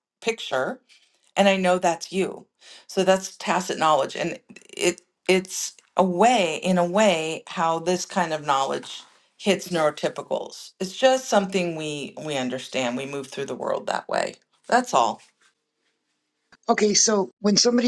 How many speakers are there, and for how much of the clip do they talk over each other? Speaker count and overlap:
2, no overlap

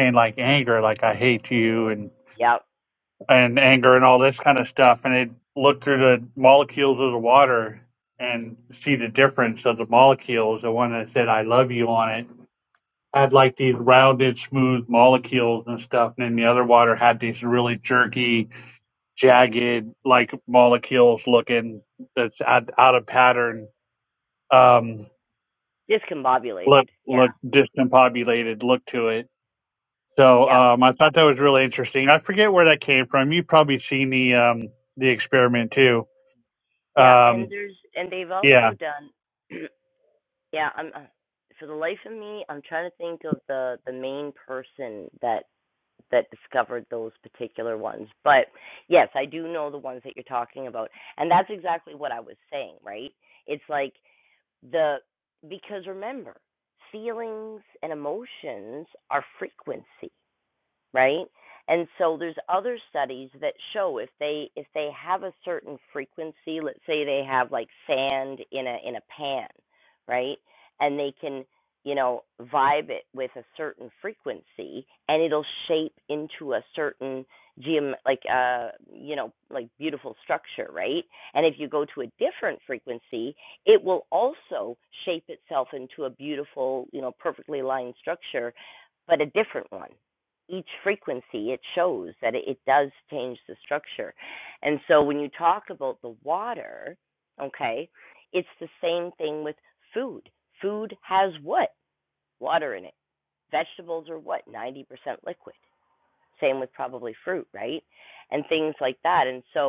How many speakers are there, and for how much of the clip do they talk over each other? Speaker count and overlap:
2, about 2%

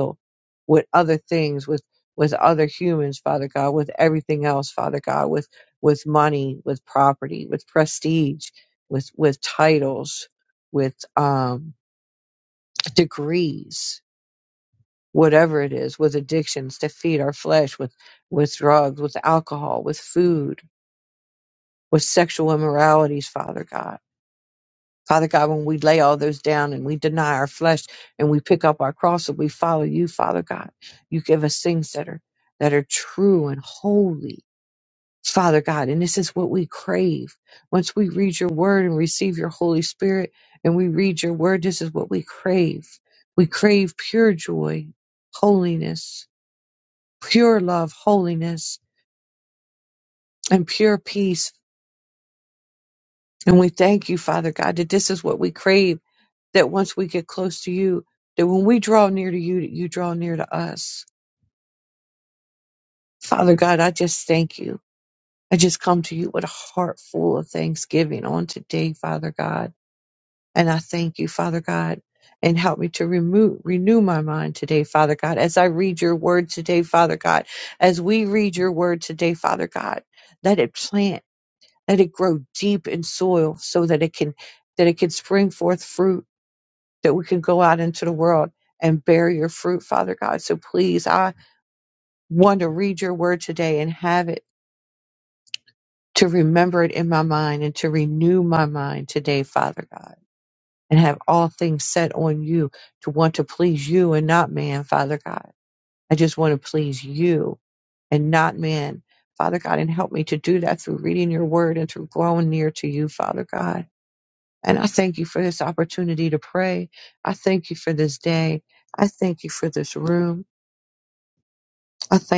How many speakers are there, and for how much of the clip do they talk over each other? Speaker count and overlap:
1, no overlap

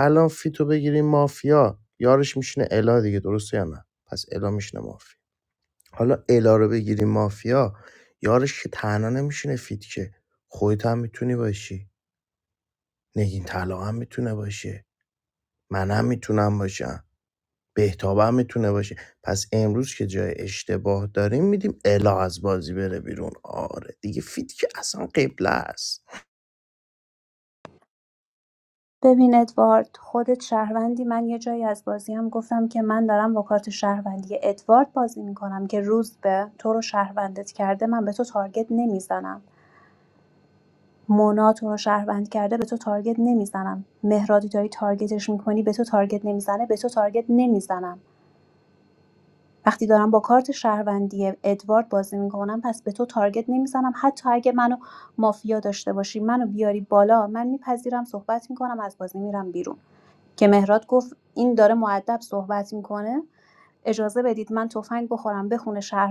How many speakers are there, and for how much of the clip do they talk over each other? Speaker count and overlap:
2, no overlap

